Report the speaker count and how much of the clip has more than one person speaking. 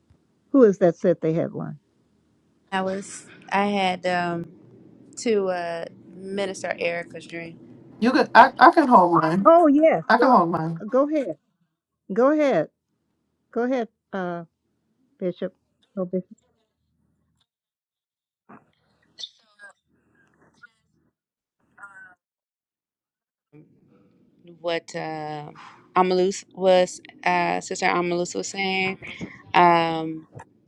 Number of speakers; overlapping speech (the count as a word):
three, about 1%